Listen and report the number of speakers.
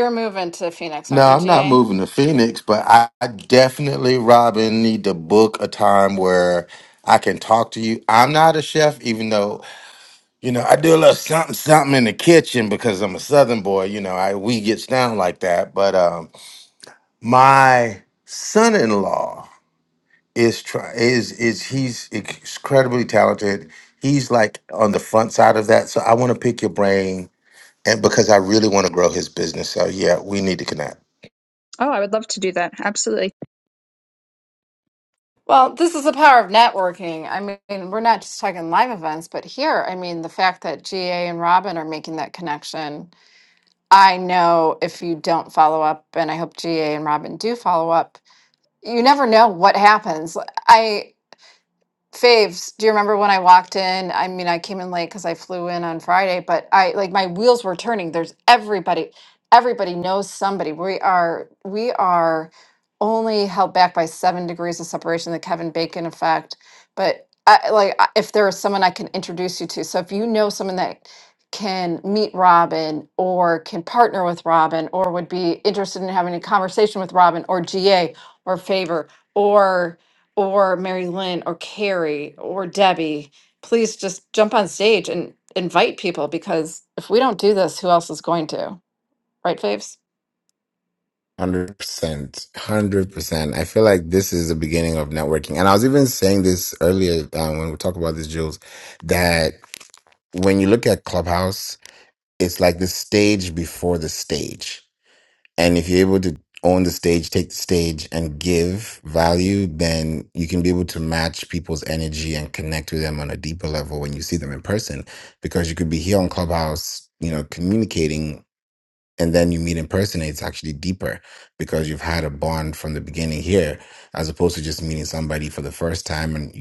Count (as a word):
four